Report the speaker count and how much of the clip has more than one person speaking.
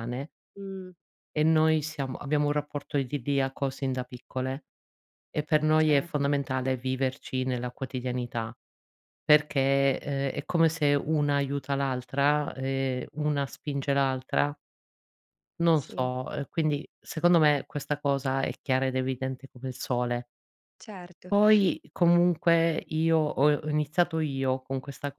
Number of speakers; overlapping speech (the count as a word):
two, about 1%